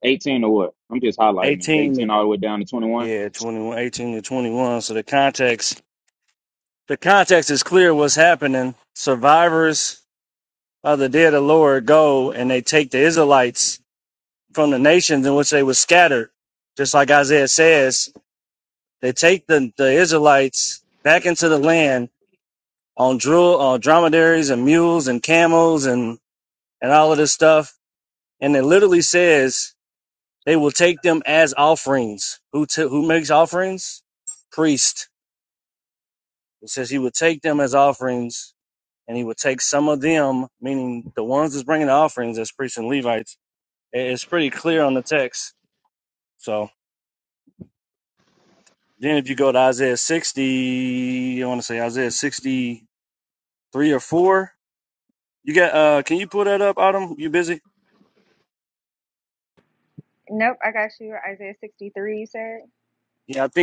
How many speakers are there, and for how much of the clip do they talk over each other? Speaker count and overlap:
three, about 1%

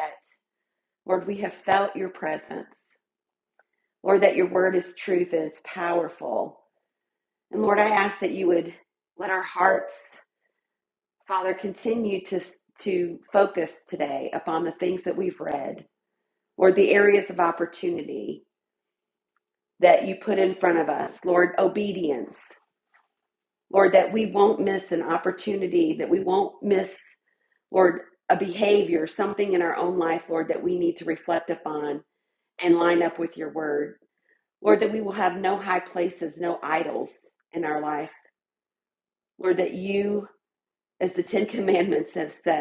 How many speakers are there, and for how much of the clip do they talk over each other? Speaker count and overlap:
one, no overlap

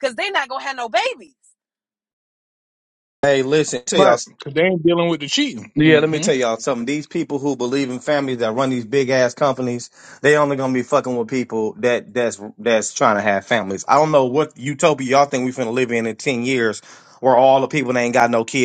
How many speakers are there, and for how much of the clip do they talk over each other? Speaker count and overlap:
three, about 4%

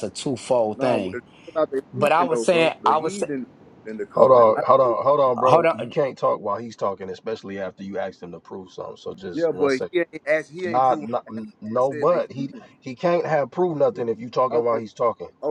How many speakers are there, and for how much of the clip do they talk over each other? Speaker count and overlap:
three, about 32%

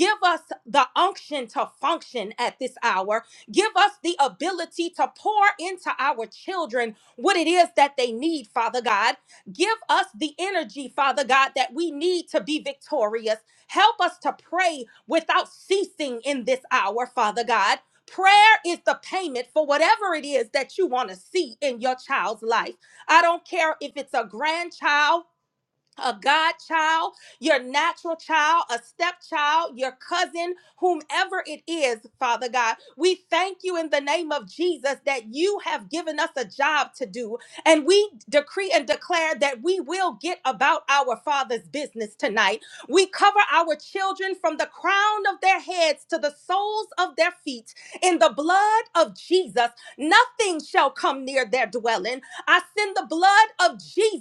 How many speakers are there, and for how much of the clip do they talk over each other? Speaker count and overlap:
one, no overlap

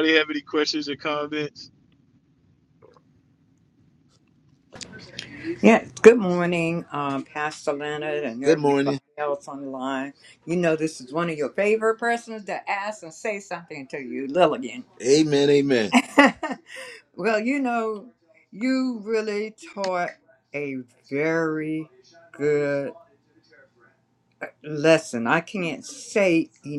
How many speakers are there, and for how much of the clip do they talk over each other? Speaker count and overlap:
three, about 2%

